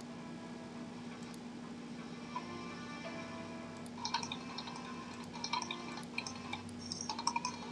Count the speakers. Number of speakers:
0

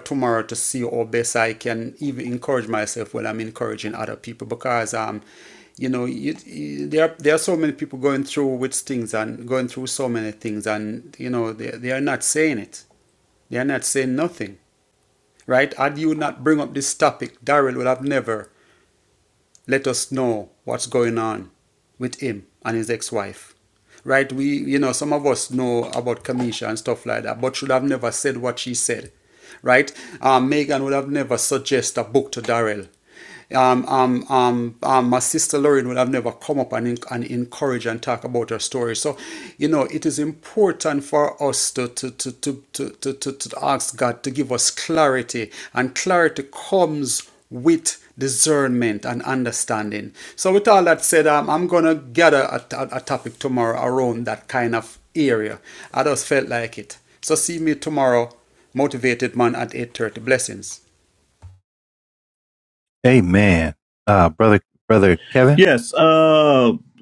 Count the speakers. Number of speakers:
3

